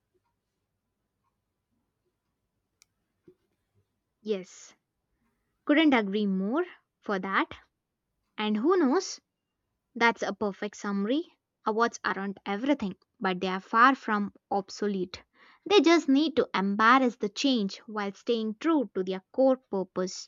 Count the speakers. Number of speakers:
1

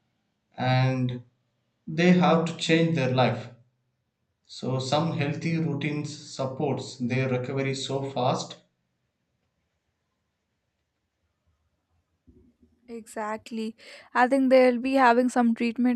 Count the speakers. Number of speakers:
2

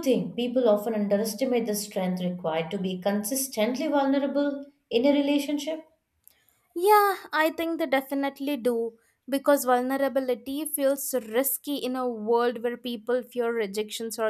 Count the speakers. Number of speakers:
2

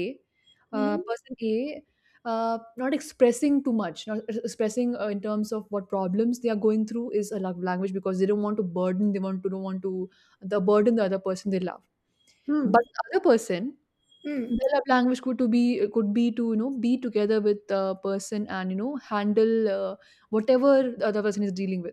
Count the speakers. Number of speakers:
2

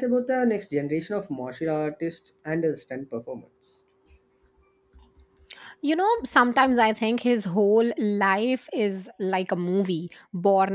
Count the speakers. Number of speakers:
2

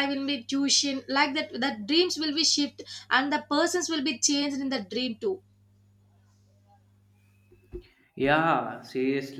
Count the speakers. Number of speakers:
2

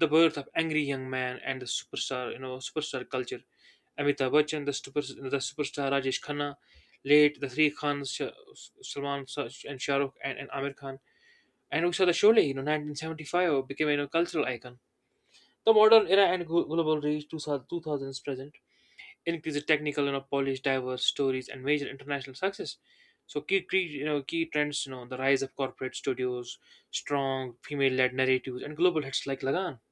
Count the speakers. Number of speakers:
1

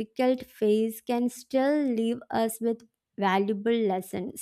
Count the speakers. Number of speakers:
1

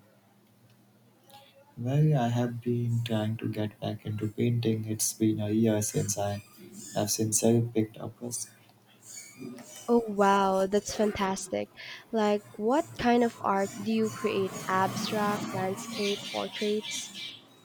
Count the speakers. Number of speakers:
2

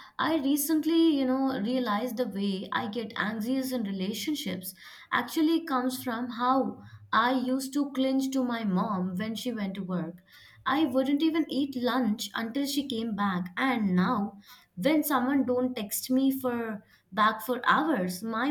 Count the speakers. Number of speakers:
1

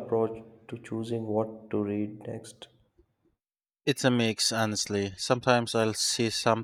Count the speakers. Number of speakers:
2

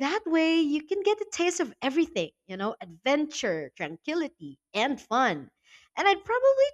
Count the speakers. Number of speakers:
1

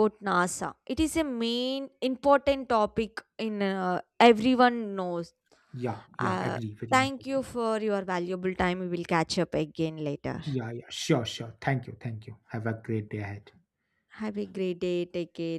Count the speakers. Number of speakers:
2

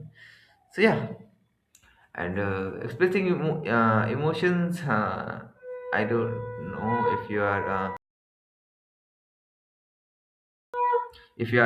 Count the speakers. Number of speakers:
1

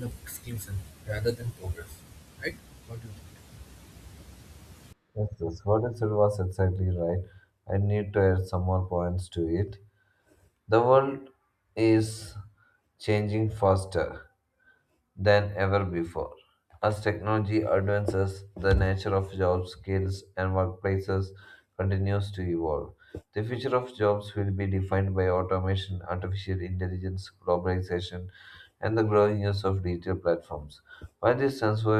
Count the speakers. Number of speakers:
2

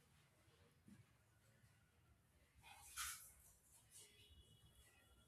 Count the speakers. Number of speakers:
0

